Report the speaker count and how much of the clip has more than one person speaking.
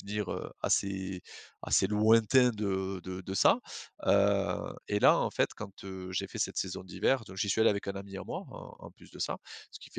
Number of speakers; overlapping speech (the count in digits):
1, no overlap